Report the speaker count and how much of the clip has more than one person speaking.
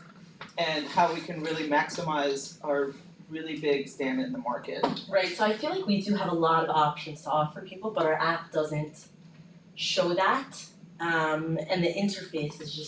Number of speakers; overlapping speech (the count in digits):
2, no overlap